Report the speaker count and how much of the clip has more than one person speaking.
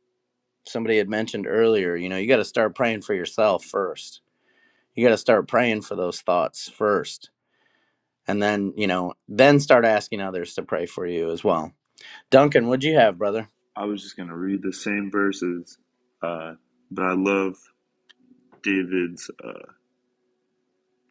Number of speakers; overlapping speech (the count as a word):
two, no overlap